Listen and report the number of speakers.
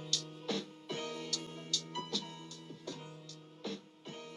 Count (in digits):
0